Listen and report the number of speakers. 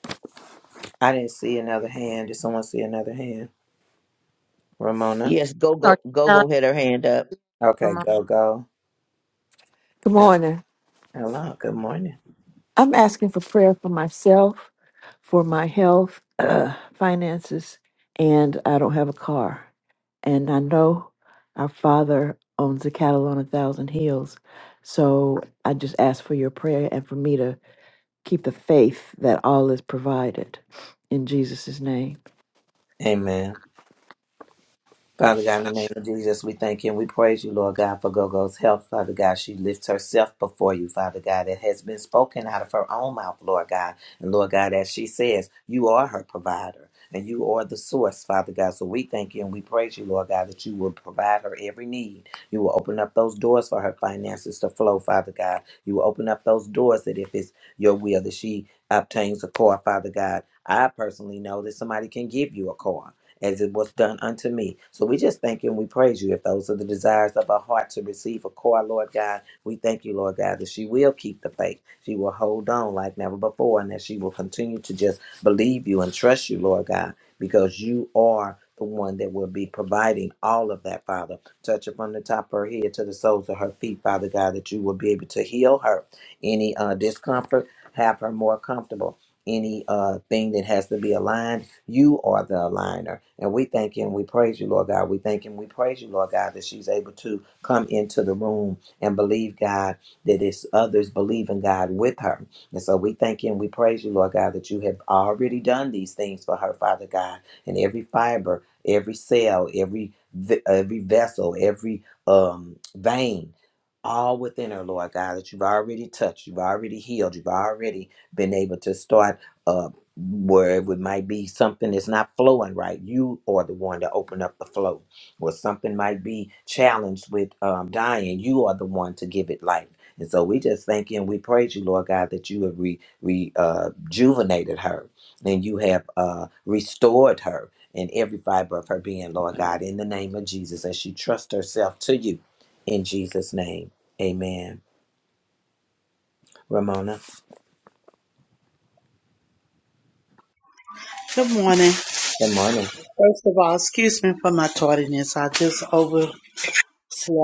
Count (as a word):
four